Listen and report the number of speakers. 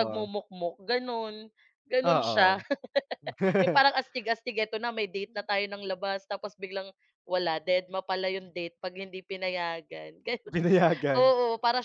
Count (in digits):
2